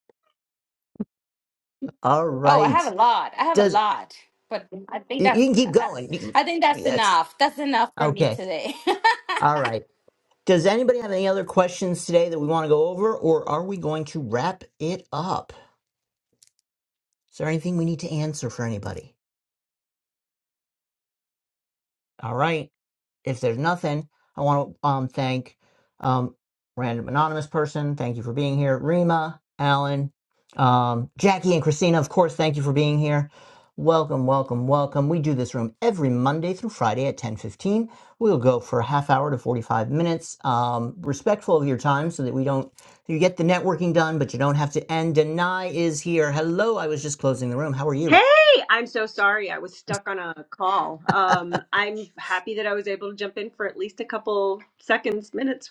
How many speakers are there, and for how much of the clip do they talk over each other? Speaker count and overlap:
3, about 4%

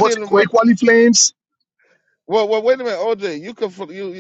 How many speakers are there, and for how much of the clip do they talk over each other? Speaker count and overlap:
2, about 11%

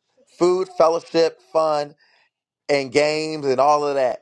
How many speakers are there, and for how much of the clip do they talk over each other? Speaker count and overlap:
1, no overlap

